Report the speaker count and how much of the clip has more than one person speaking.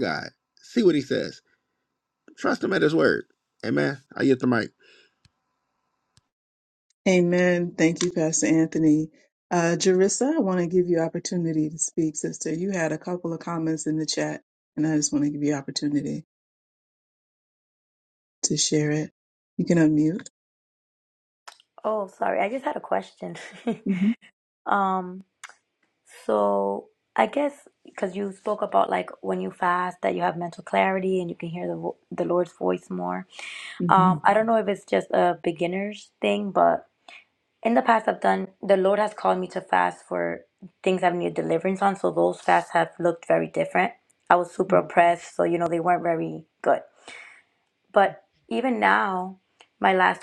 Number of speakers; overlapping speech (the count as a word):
three, about 1%